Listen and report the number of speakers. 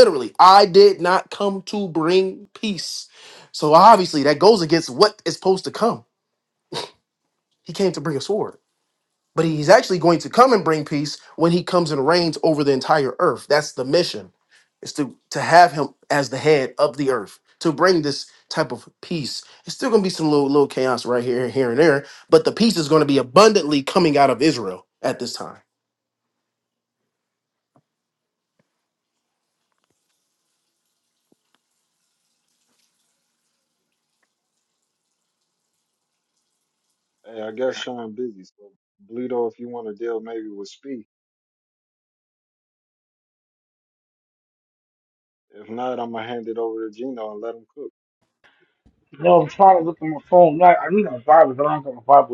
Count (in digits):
3